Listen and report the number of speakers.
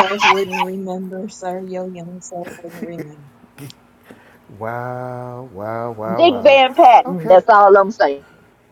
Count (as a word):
three